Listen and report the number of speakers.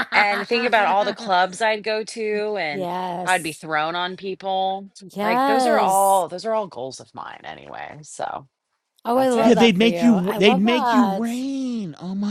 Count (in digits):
3